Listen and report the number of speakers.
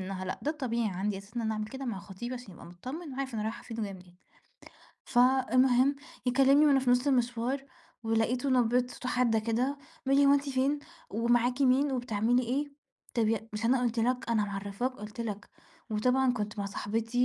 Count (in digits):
1